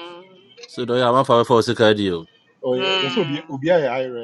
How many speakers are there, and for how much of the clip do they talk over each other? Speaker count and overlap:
three, about 19%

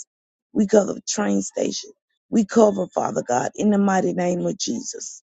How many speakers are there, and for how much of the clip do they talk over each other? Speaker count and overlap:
one, no overlap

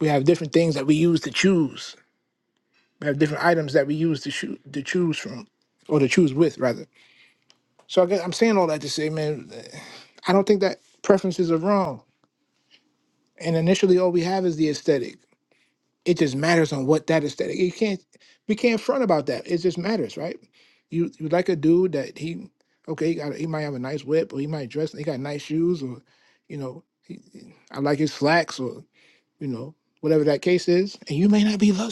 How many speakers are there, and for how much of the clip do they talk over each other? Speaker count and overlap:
one, no overlap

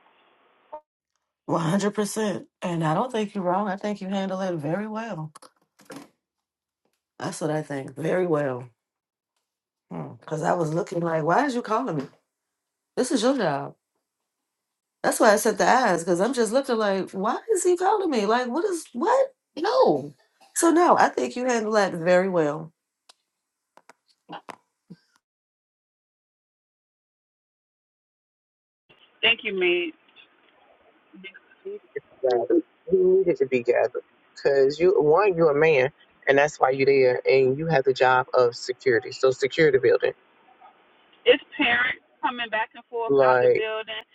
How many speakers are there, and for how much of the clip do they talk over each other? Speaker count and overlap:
three, about 1%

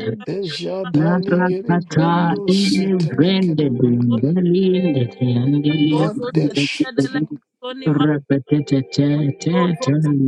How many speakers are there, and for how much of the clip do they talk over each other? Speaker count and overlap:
three, about 49%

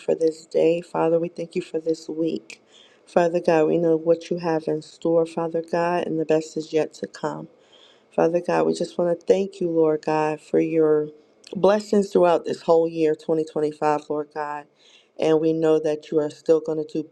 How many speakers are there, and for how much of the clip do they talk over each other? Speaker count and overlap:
one, no overlap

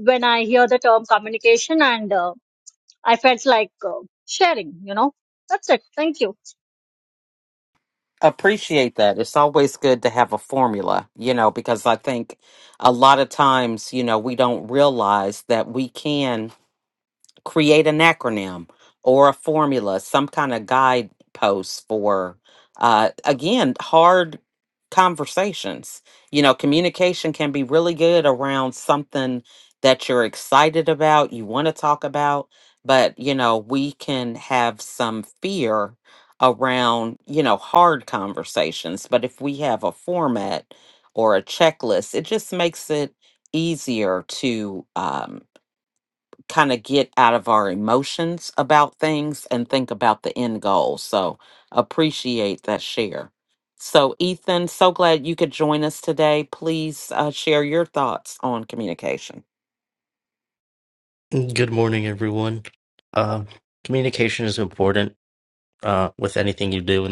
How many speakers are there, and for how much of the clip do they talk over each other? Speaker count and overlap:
three, no overlap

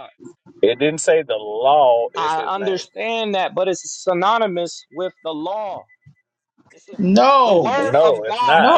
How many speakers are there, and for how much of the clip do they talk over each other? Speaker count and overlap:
three, about 23%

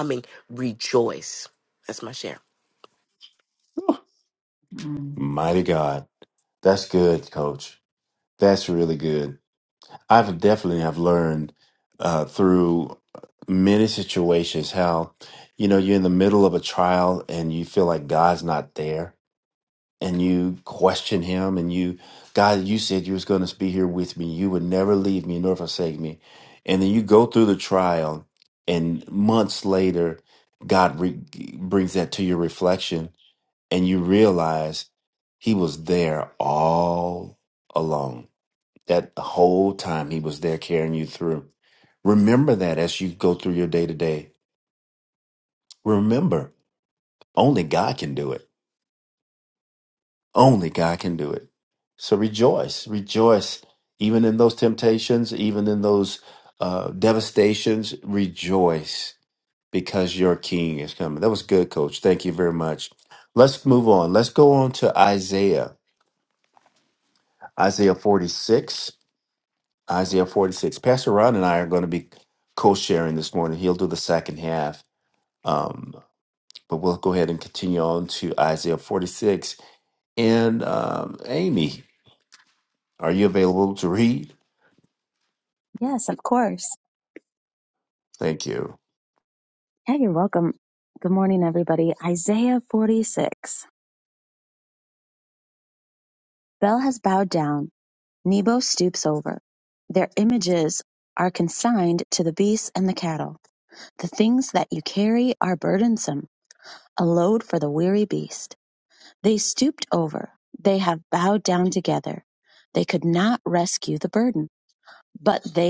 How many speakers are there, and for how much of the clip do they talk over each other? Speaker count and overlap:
three, no overlap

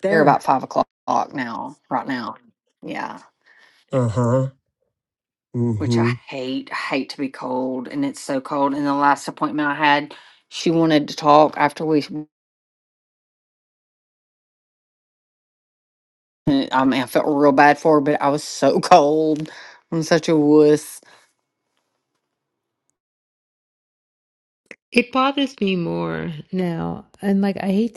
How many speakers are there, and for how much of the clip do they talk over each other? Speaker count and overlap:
three, about 2%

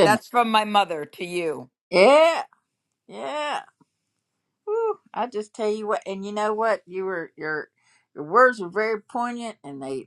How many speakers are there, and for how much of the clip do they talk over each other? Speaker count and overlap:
two, about 1%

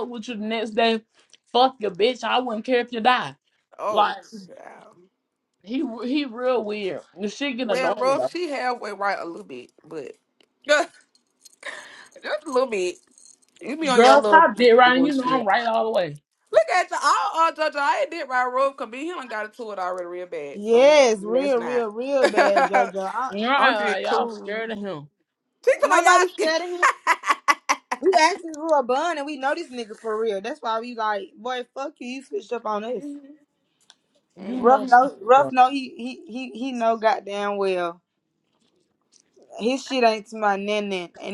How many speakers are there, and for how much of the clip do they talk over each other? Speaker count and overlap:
three, about 14%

